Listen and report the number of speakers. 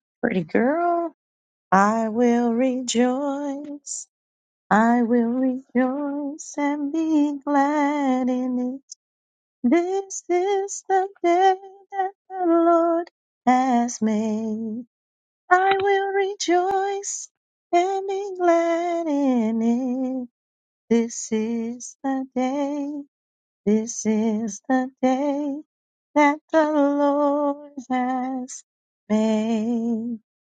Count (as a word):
one